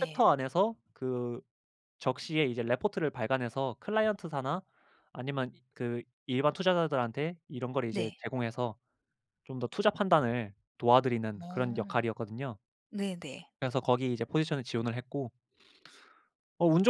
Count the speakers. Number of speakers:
2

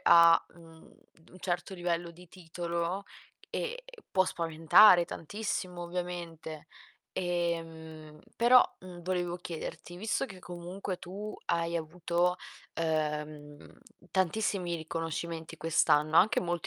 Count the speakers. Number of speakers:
1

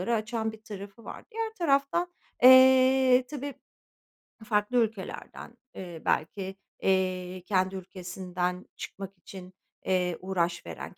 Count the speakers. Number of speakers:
1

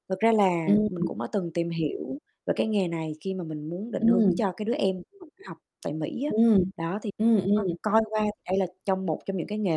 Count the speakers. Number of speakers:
2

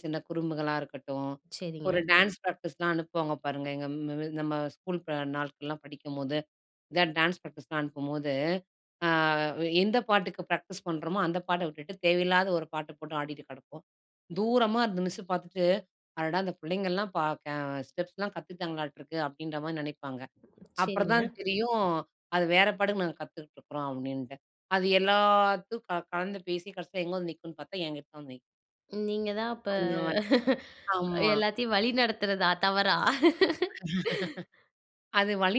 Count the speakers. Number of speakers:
2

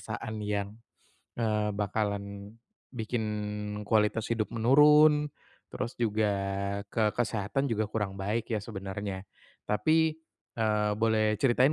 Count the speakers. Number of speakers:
1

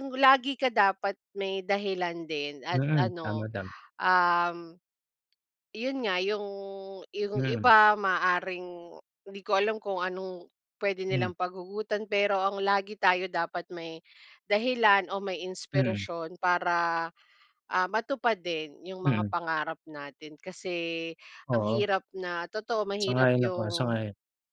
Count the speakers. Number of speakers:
2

